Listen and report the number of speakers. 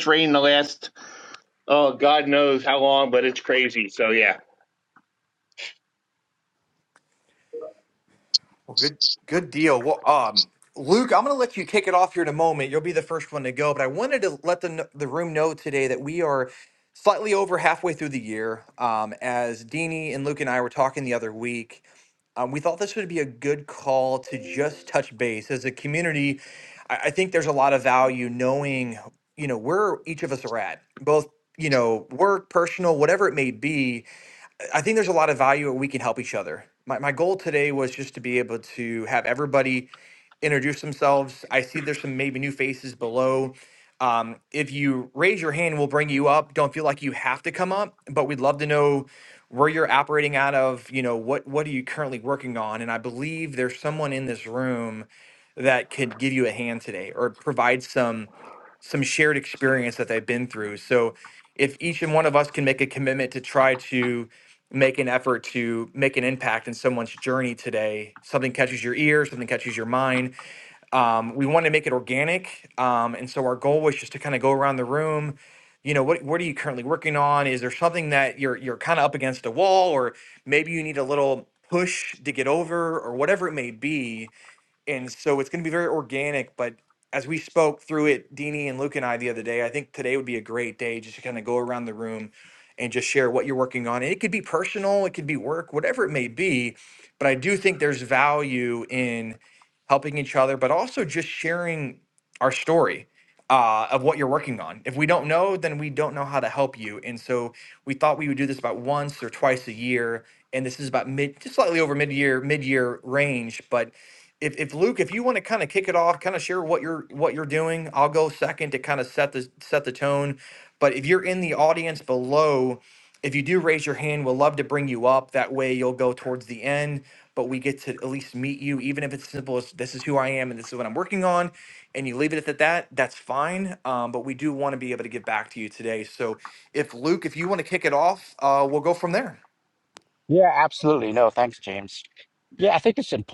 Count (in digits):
3